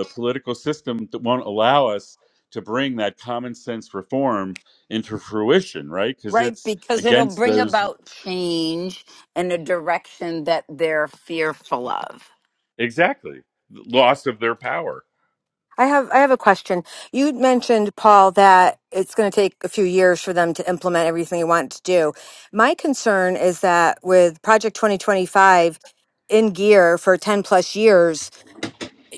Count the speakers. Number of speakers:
3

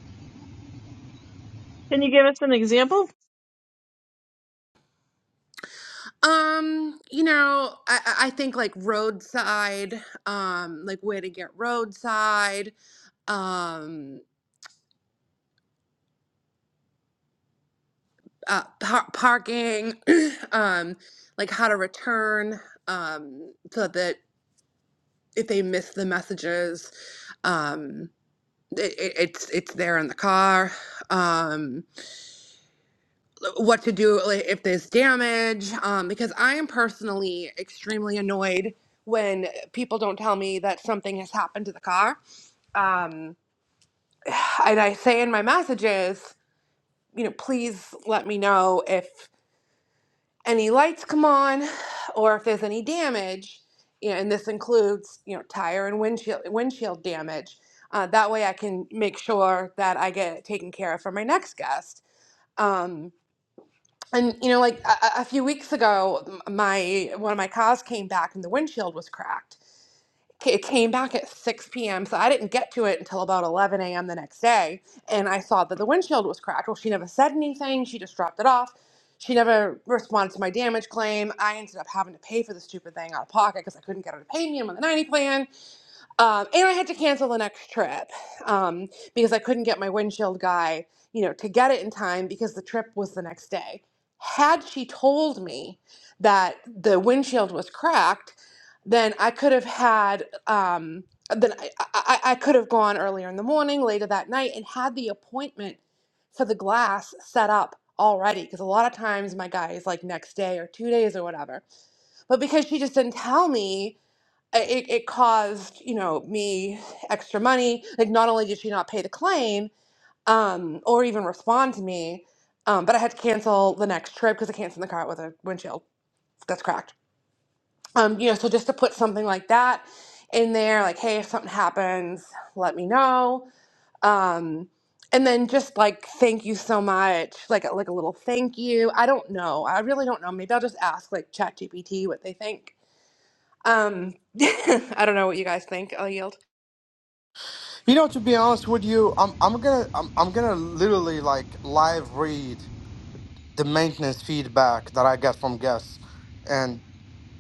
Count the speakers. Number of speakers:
3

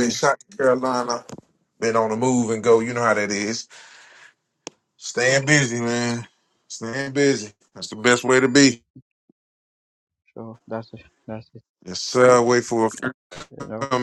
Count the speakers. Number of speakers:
2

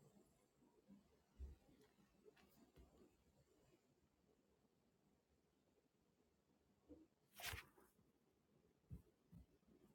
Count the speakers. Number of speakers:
0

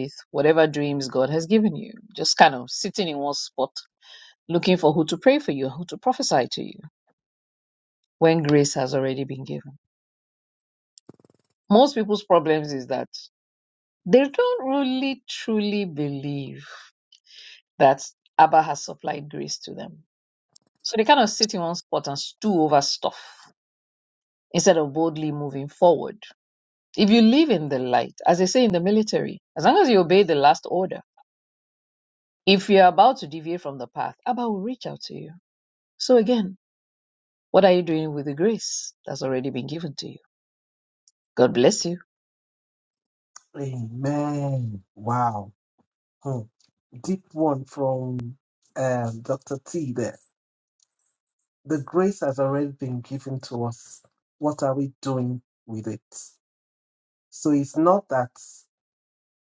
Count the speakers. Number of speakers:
2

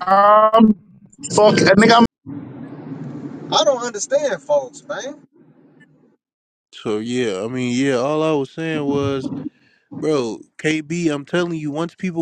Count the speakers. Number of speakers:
3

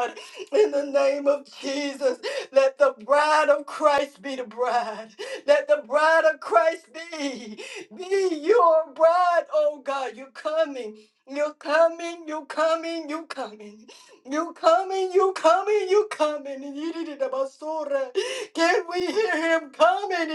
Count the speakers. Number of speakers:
1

